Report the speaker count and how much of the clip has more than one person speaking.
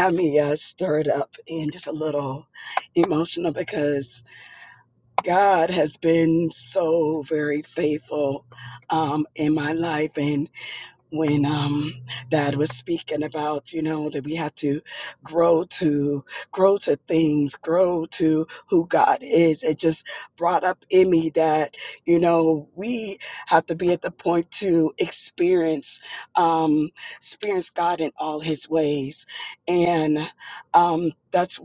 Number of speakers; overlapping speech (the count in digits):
1, no overlap